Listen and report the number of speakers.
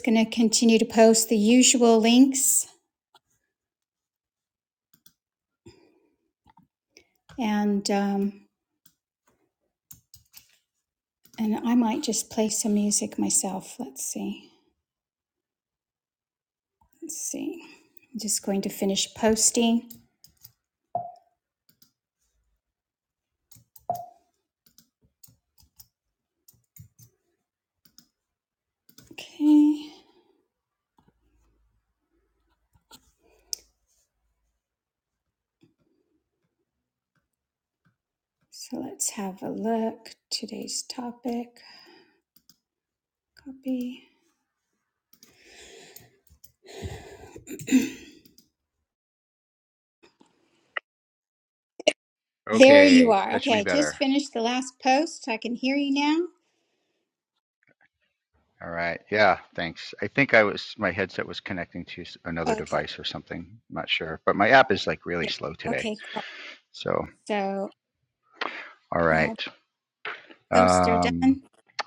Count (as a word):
two